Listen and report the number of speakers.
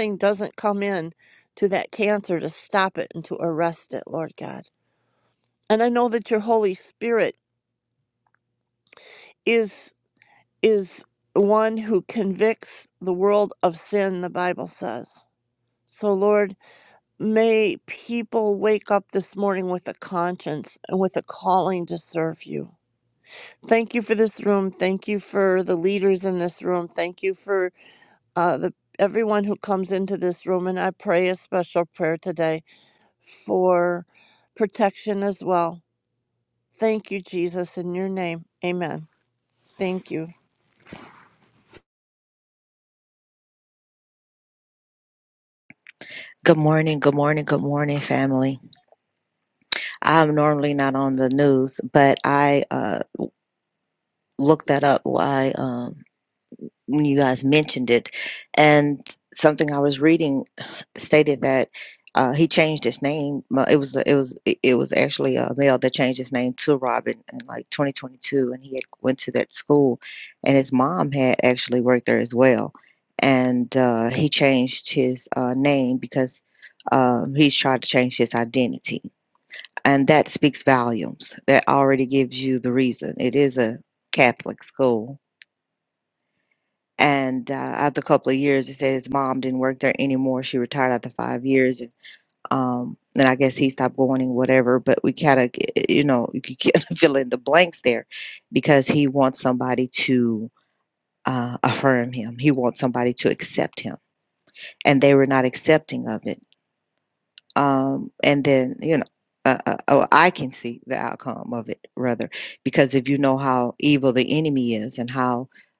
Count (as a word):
two